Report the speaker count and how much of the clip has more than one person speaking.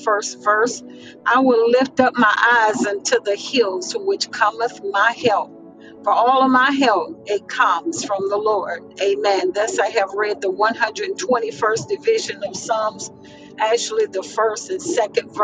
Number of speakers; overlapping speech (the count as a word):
one, no overlap